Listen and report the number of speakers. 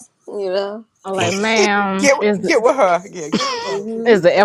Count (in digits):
3